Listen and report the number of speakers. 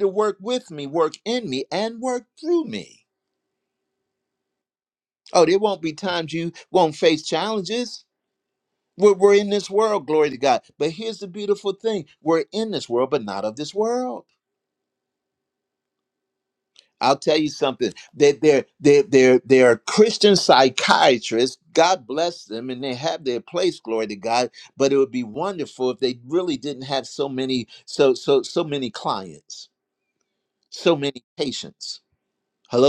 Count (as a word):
one